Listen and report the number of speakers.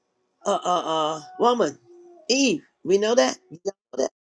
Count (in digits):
1